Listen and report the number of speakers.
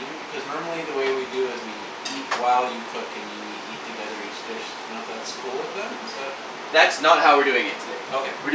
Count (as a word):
two